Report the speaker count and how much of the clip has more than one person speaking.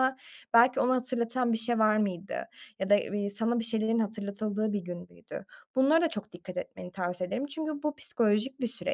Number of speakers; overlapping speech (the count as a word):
one, no overlap